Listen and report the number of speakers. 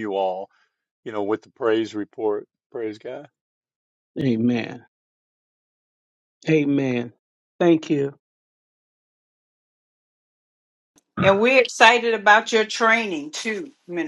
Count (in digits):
3